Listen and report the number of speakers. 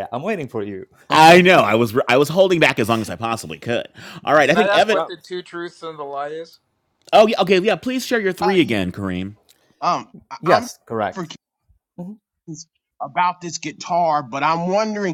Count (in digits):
4